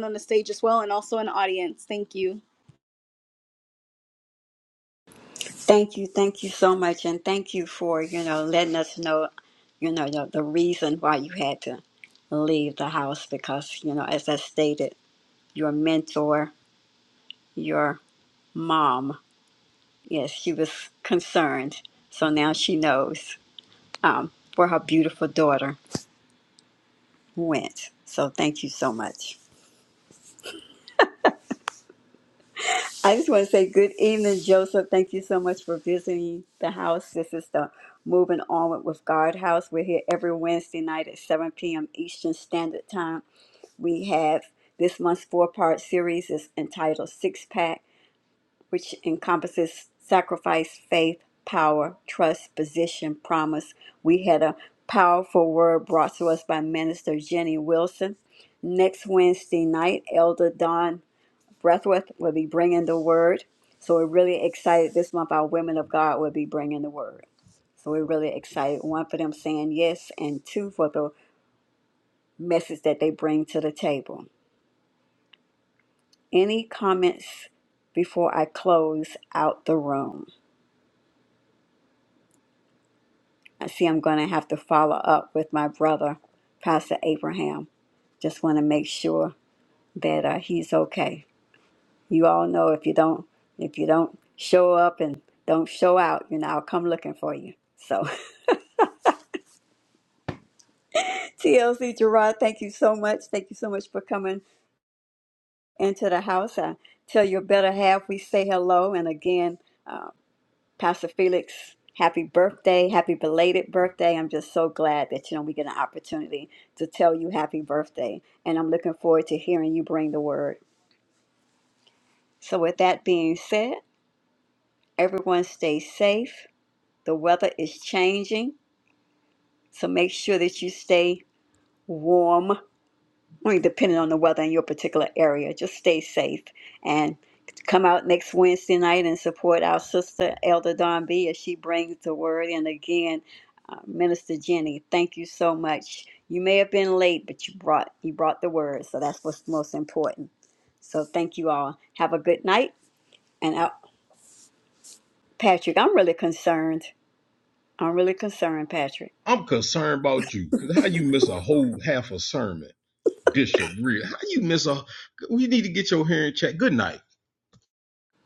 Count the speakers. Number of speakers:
three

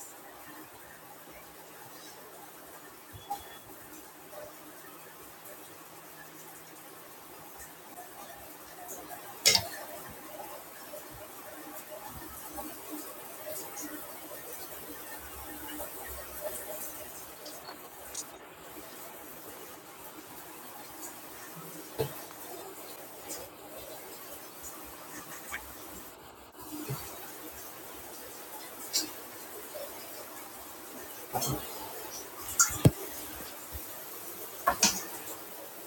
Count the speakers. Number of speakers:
zero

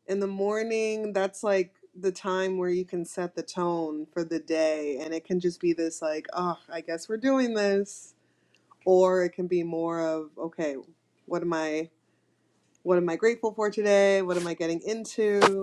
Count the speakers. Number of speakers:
one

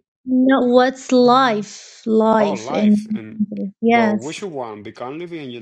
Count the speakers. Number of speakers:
two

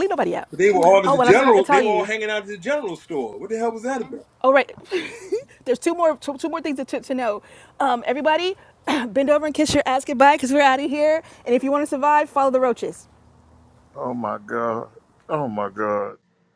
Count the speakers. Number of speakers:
three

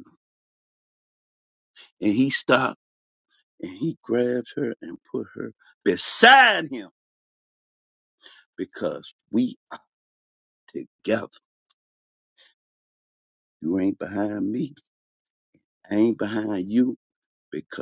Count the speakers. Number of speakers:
one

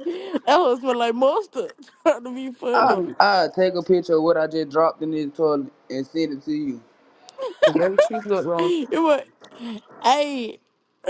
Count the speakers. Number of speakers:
three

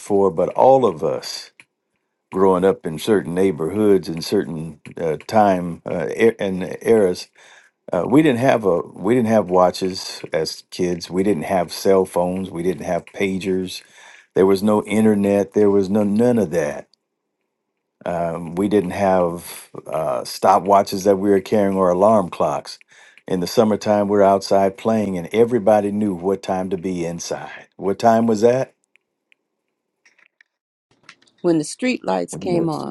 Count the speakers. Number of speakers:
two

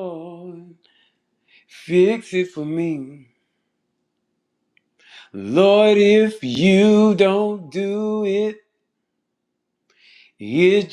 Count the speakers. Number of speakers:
one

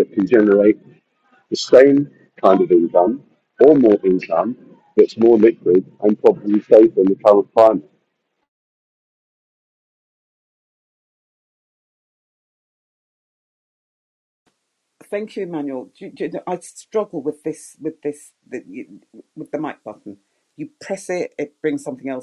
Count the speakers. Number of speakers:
two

